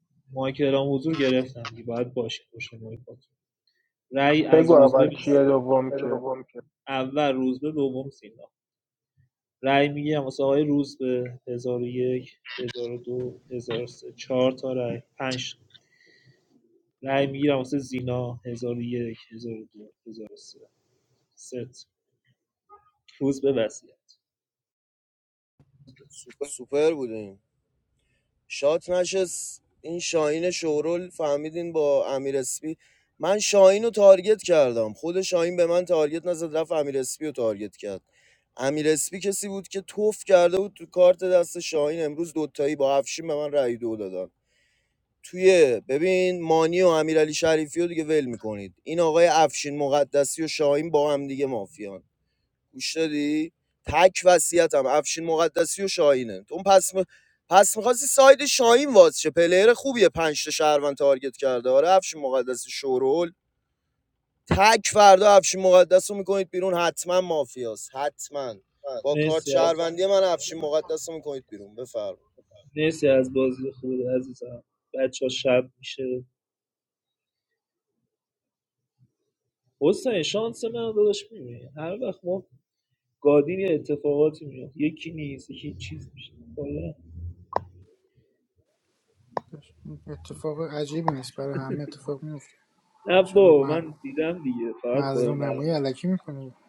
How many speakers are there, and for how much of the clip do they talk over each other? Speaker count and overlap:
4, about 3%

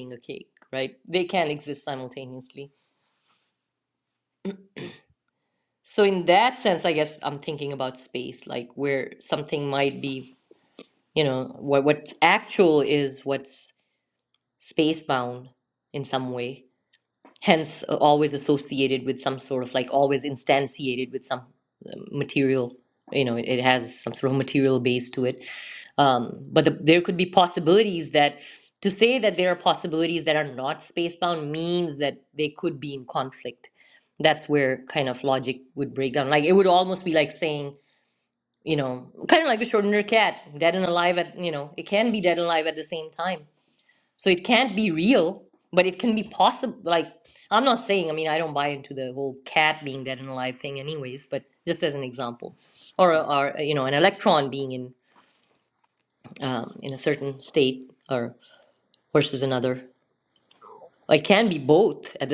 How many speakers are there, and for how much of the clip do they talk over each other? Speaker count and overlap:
1, no overlap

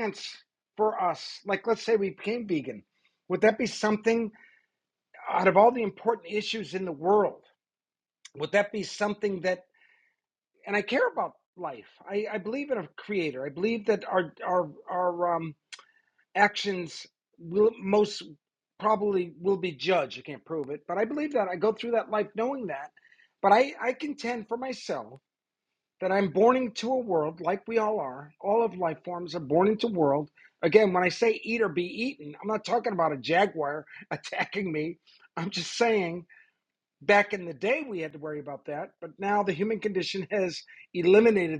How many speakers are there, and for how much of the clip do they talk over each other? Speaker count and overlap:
1, no overlap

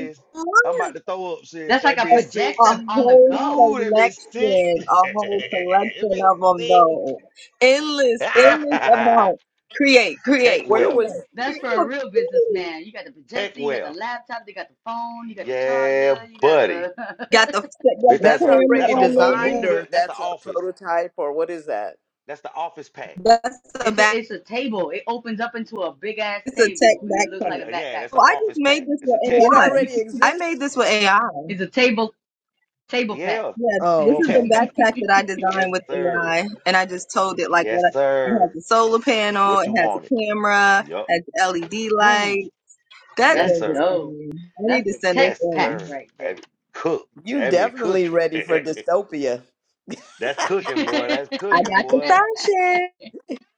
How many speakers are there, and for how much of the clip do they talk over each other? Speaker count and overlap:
4, about 44%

